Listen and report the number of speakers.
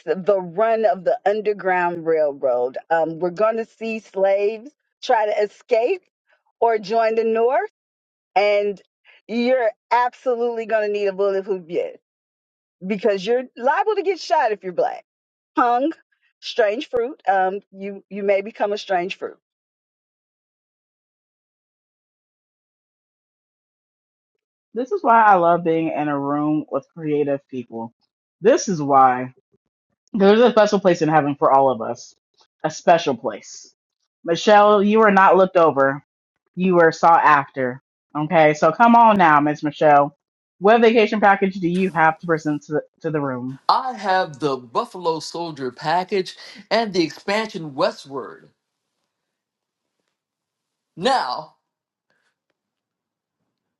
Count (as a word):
three